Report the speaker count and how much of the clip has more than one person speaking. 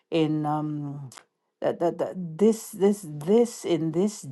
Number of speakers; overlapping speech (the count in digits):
1, no overlap